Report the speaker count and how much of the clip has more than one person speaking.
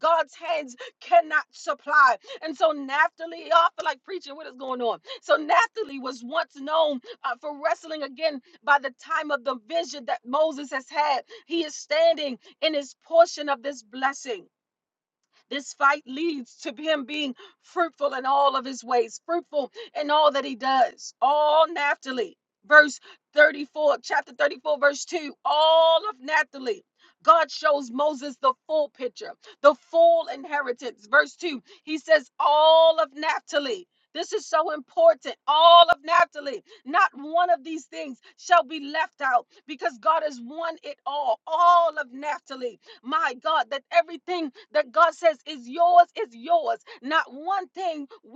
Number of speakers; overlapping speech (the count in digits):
1, no overlap